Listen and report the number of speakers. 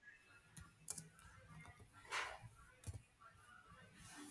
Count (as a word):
zero